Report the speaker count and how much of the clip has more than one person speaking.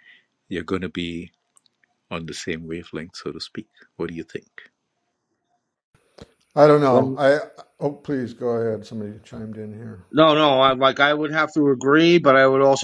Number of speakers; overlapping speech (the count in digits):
3, about 1%